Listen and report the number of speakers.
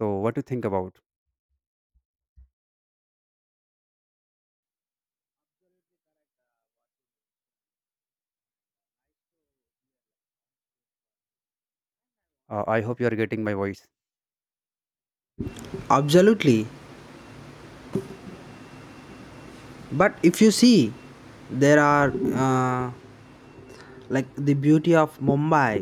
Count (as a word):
two